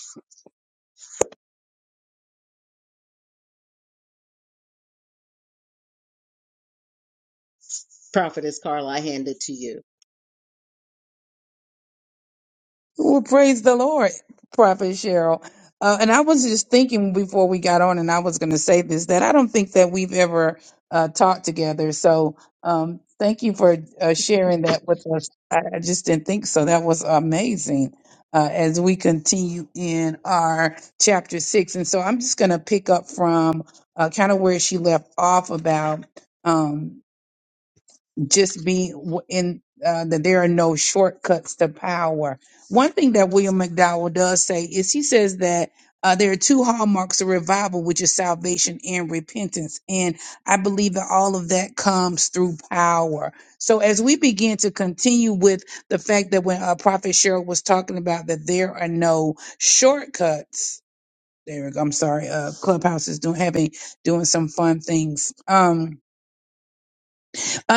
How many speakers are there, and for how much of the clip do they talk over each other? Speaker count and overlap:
2, no overlap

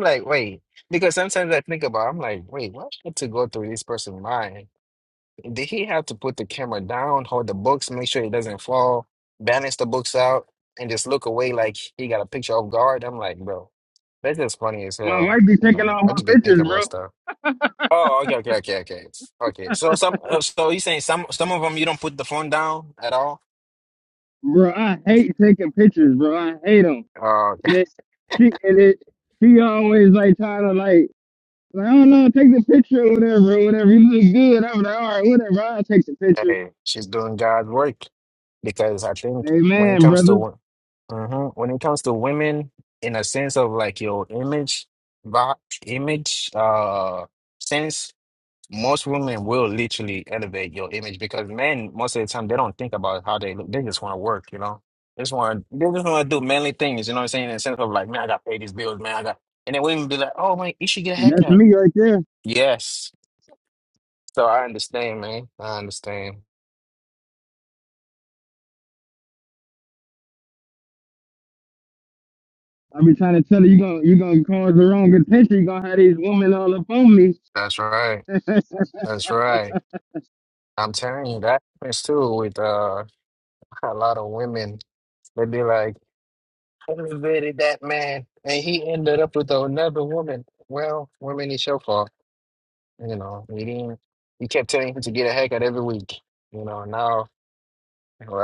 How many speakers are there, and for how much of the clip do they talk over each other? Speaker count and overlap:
2, about 3%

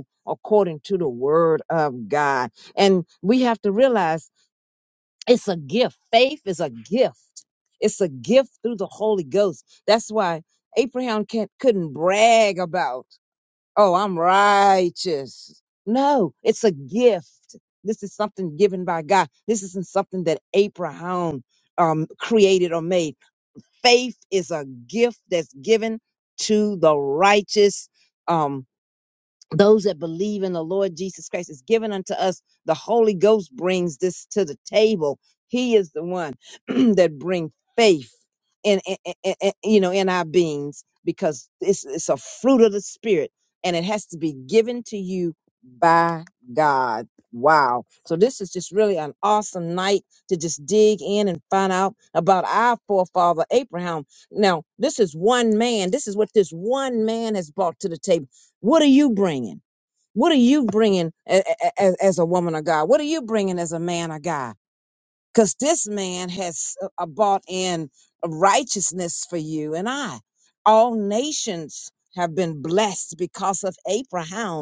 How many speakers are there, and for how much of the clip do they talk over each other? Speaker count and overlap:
1, no overlap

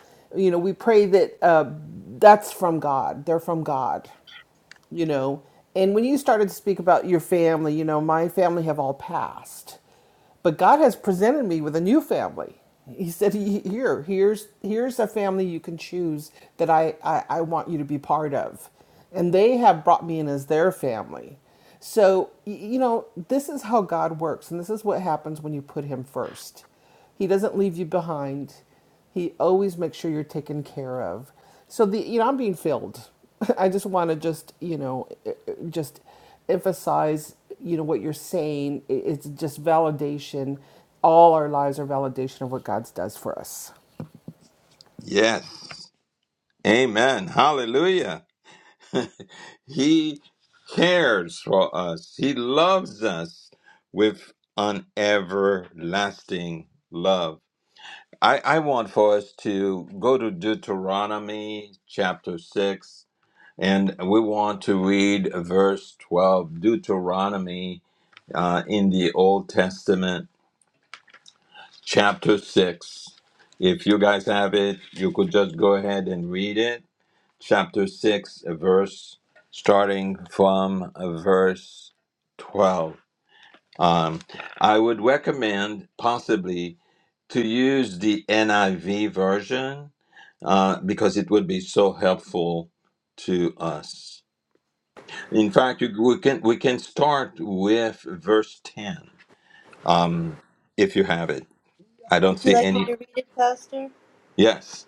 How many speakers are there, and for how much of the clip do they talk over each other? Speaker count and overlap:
3, about 1%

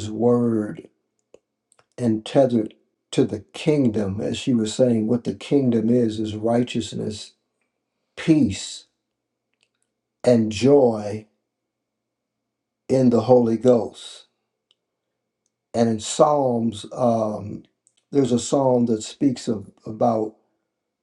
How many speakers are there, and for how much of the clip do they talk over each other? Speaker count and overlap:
1, no overlap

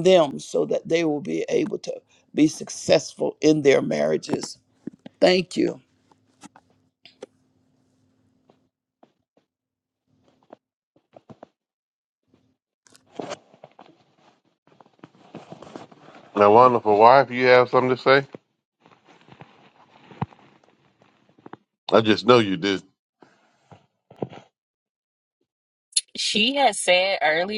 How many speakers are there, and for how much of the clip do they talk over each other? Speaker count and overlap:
3, no overlap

